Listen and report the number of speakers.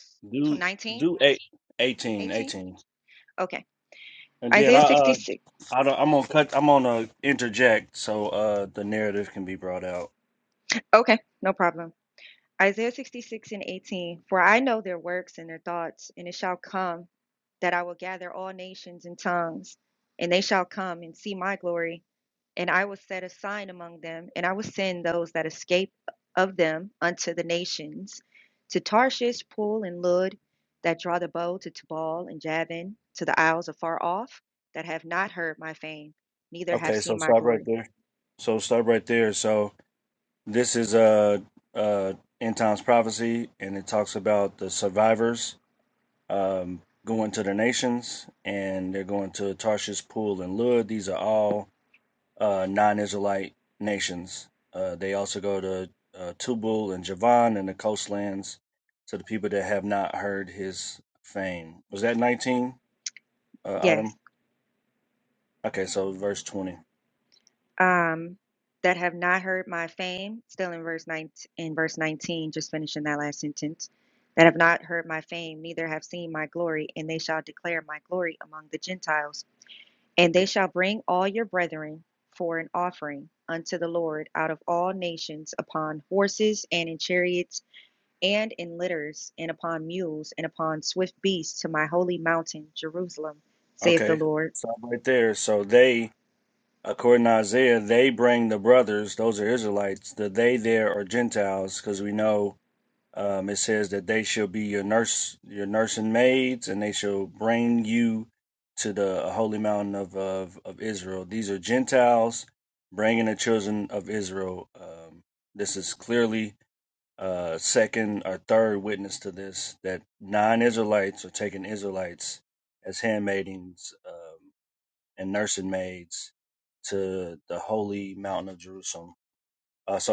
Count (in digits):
2